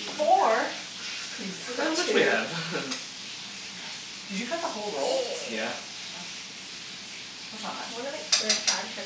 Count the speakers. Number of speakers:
three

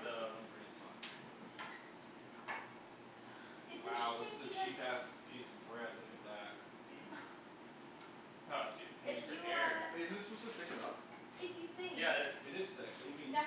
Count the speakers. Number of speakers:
four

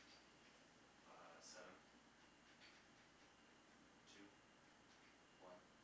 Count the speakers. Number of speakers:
one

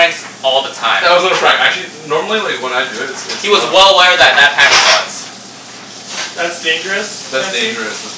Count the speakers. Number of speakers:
three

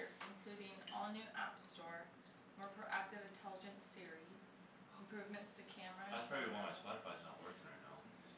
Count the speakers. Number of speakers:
two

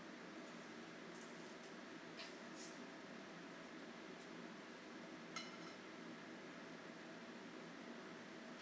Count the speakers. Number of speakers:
zero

